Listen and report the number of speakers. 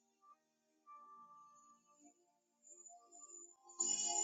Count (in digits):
0